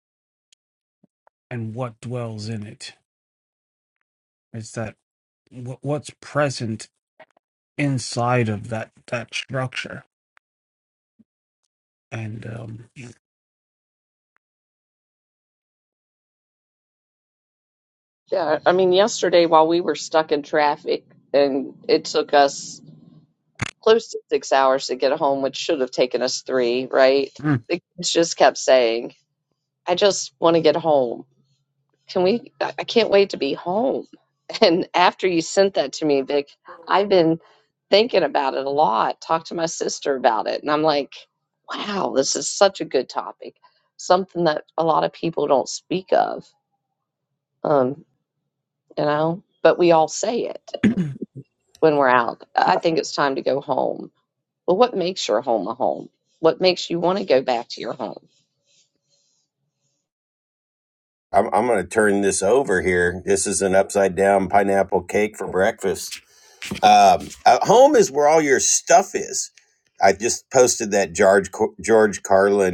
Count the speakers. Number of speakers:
3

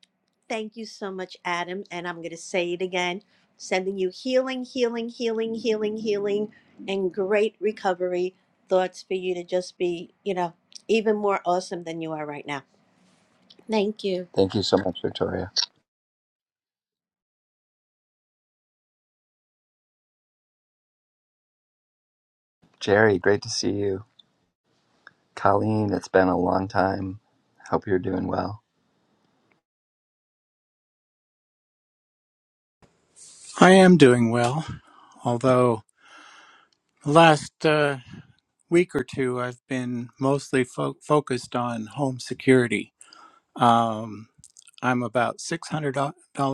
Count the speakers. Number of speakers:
3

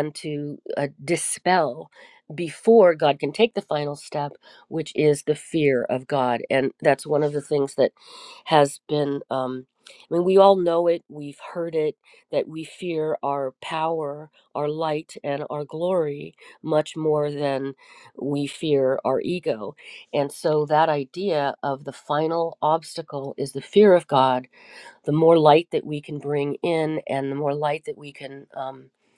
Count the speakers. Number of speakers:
1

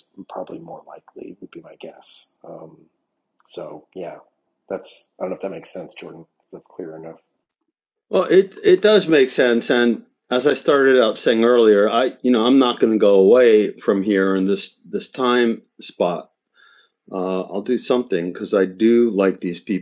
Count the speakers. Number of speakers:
2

